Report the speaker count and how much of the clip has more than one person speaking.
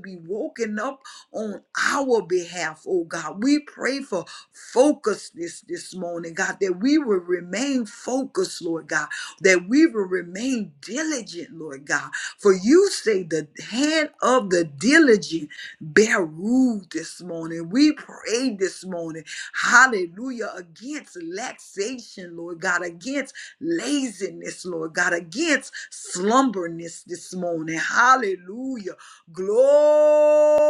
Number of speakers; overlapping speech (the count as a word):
one, no overlap